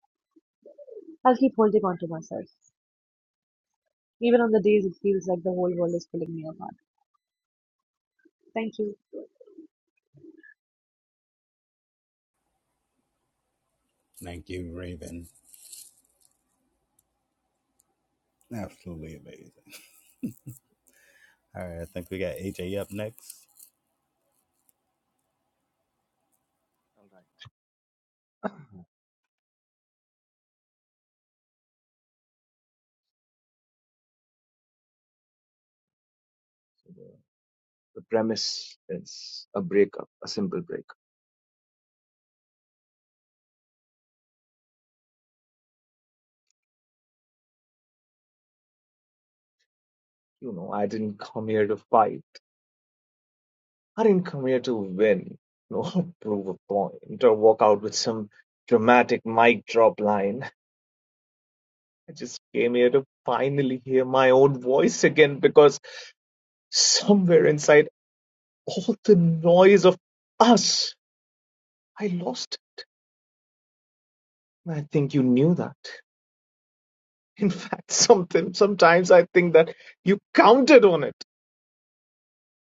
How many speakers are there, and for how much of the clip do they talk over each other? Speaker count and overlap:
three, no overlap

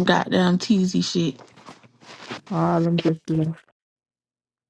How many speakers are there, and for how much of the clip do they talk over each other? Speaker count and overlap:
two, no overlap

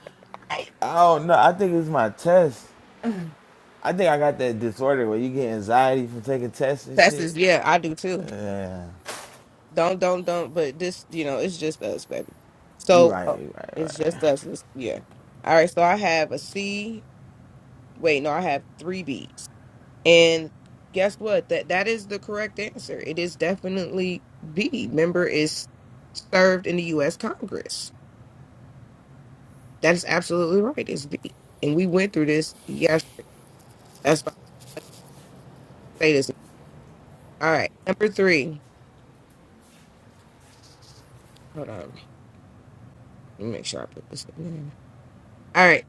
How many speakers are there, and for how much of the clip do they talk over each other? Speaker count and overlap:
two, about 3%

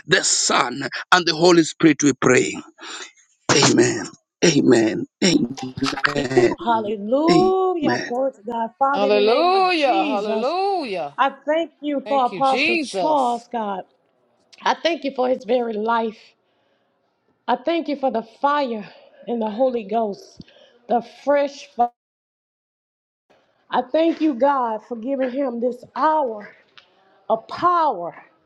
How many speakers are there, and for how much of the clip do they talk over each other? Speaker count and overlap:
three, about 11%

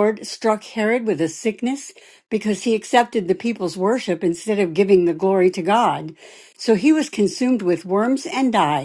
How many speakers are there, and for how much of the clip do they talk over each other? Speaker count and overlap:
one, no overlap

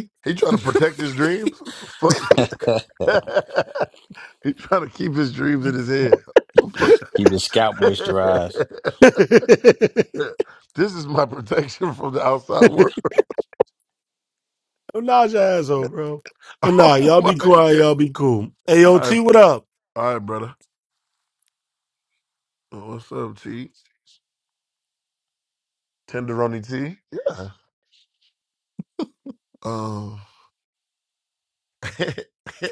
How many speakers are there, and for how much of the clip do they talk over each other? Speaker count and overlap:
three, about 6%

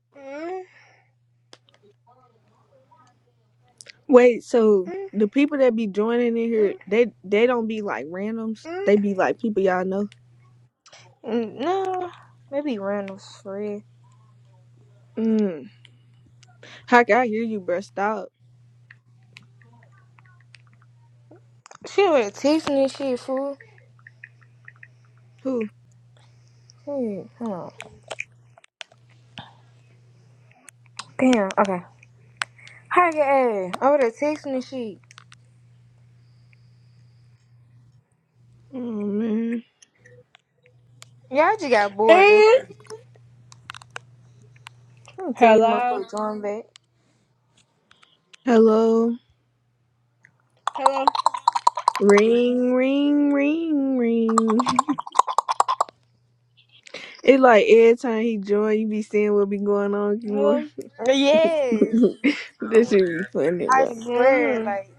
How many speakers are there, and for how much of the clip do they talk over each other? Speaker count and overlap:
three, about 5%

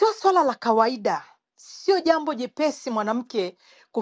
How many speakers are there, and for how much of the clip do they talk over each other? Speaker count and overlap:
one, no overlap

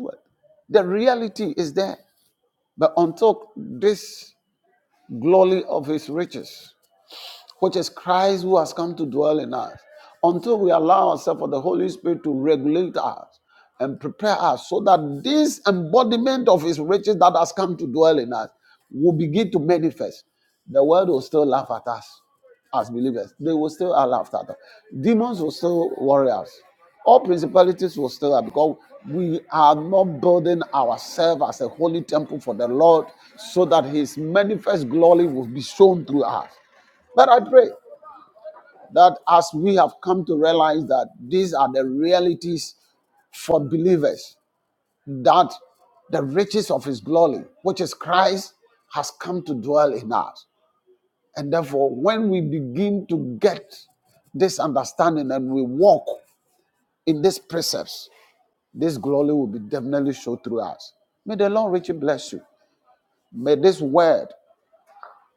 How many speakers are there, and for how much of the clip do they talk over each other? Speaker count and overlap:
one, no overlap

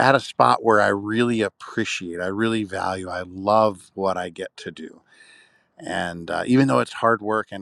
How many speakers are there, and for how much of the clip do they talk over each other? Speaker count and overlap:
one, no overlap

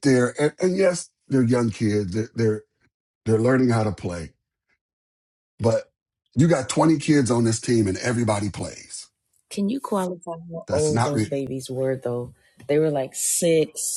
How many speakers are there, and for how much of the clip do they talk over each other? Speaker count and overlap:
two, about 4%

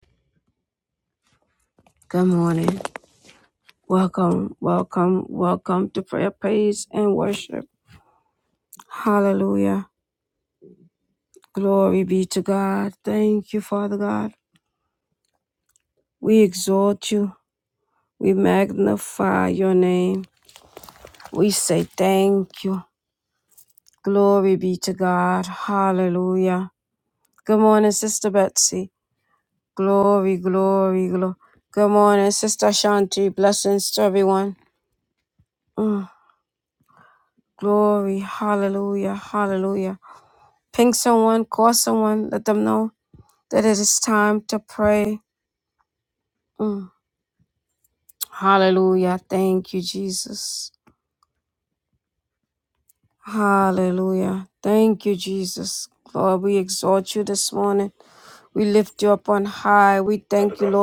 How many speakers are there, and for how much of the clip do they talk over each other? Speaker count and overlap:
one, no overlap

